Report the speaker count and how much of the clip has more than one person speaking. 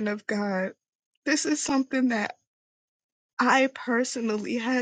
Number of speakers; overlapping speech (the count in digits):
1, no overlap